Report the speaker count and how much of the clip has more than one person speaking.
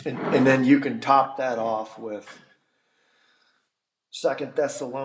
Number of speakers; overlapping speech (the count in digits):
1, no overlap